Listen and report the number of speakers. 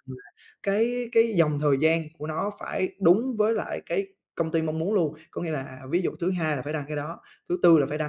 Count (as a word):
one